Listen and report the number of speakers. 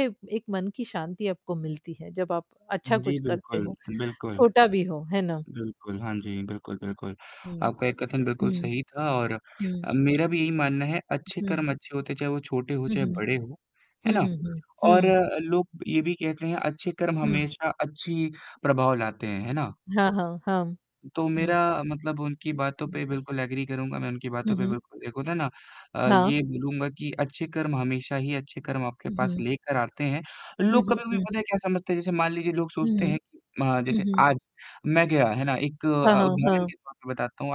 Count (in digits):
2